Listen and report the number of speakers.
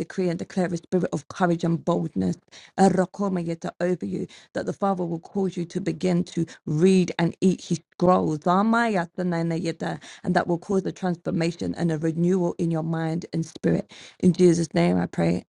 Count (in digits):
1